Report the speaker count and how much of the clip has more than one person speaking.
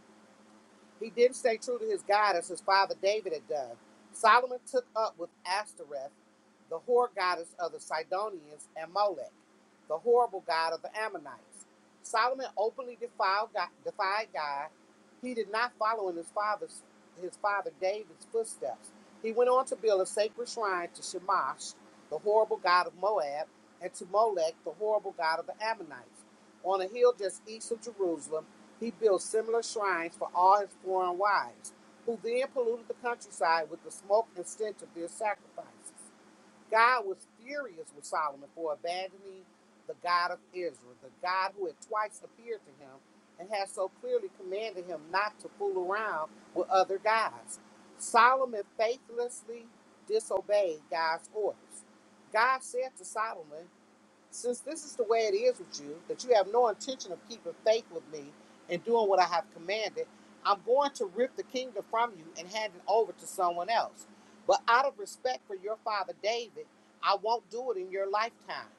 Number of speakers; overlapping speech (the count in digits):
1, no overlap